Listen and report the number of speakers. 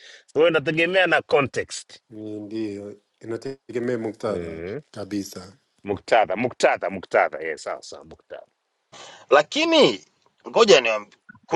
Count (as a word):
three